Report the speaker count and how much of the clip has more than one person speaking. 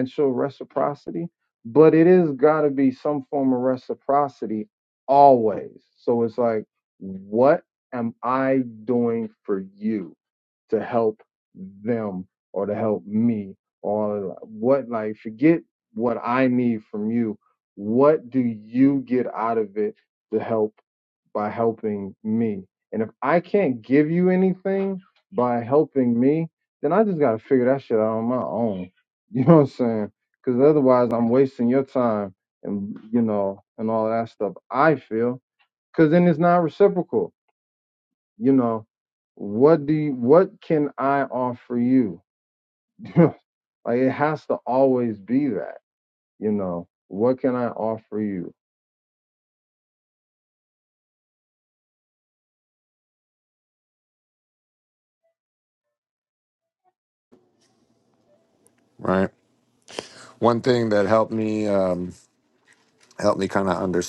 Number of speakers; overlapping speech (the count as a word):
two, no overlap